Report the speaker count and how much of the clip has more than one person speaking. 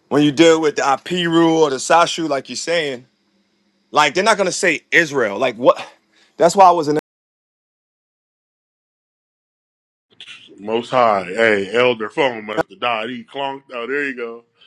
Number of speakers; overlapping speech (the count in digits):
2, no overlap